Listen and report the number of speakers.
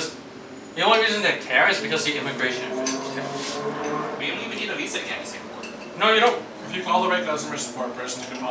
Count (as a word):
three